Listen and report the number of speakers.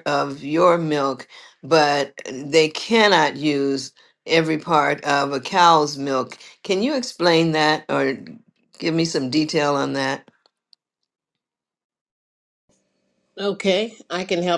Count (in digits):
2